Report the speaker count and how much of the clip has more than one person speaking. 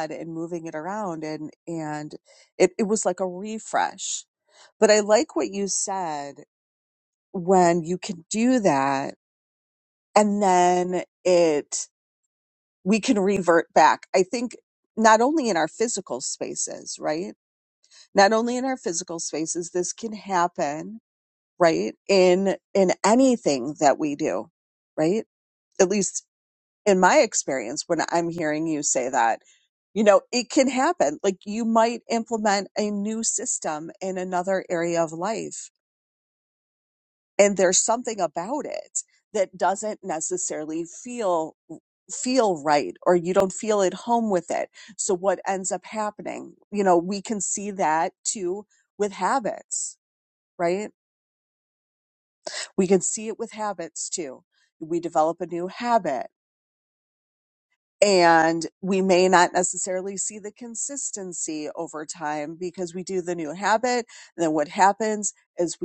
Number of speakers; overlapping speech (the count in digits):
1, no overlap